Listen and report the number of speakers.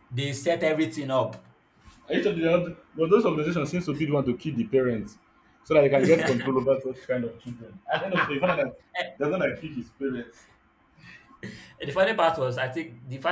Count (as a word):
two